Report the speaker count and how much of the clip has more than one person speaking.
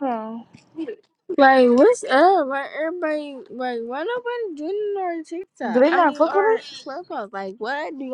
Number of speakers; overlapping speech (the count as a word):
two, about 14%